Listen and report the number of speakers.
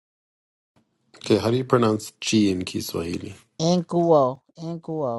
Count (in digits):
2